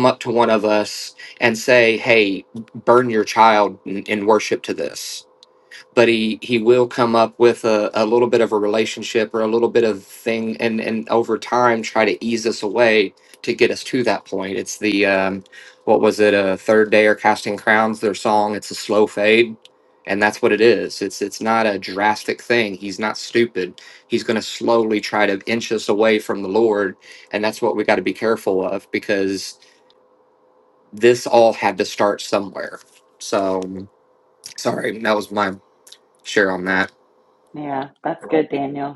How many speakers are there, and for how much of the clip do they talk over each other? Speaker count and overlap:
2, no overlap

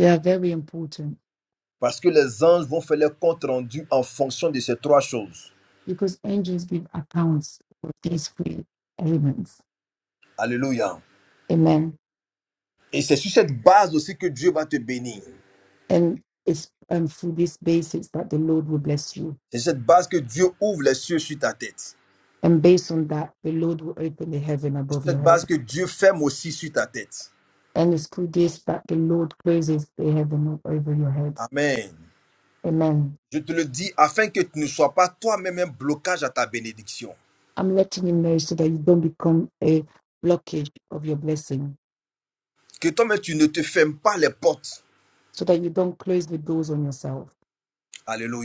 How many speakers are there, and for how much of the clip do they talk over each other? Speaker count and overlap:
2, about 1%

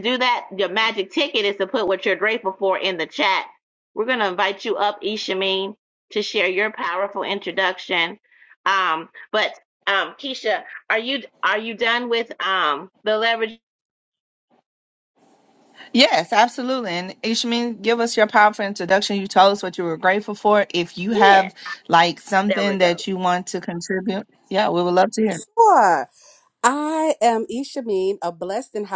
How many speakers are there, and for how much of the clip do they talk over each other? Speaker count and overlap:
3, about 3%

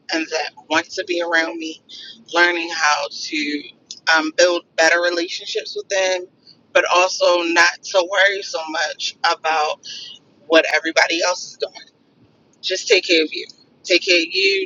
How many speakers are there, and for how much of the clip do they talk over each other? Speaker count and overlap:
1, no overlap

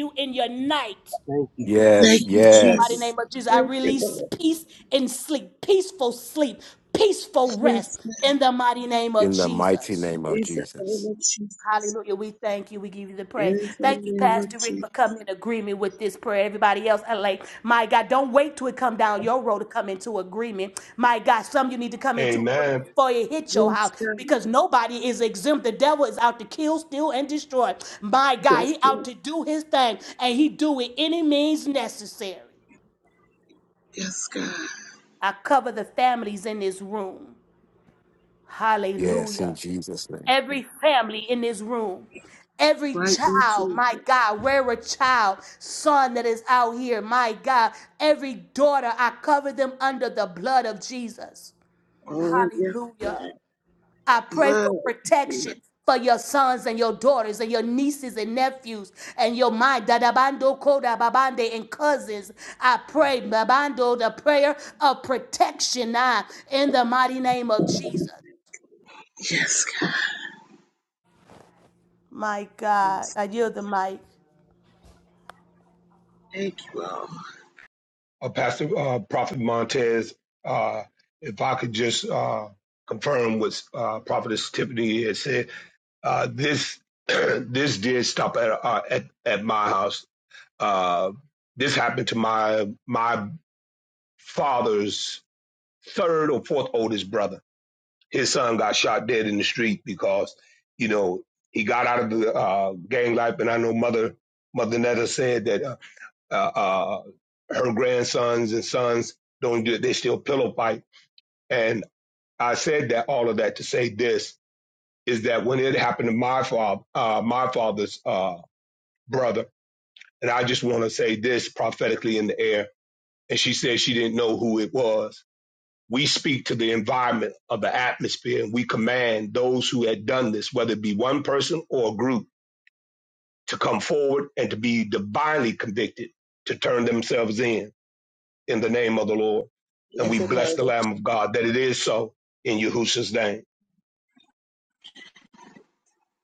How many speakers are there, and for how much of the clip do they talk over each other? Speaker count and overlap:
4, about 7%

